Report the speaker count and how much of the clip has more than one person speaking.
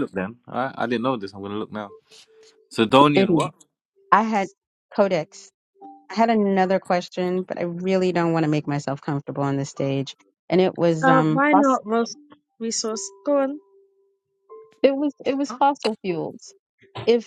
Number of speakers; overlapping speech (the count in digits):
3, about 6%